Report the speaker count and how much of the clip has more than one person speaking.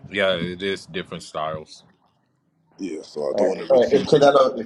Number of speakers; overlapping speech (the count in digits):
3, about 21%